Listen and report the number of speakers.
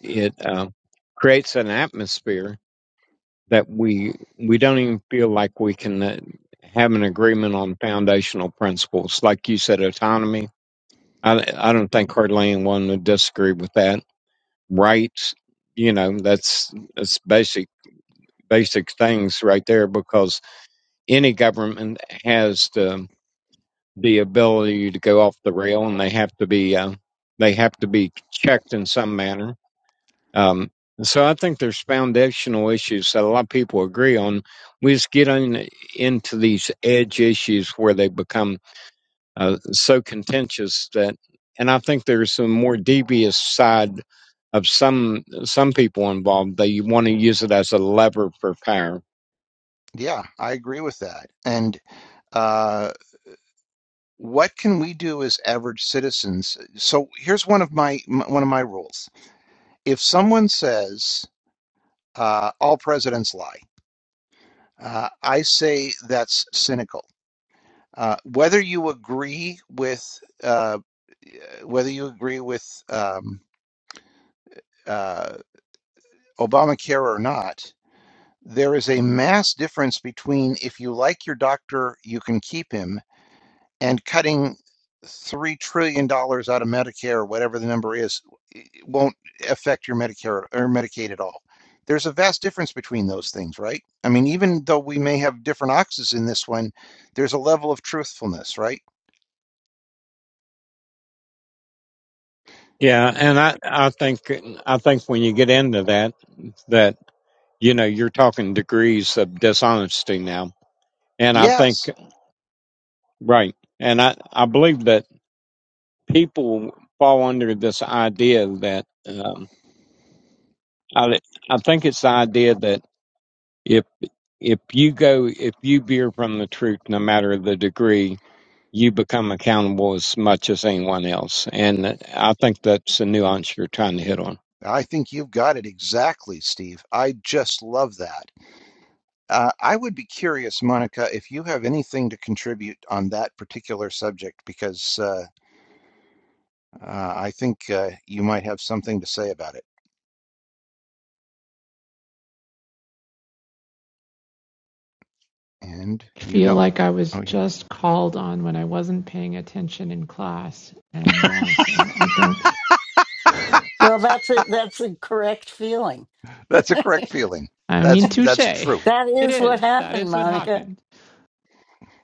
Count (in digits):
4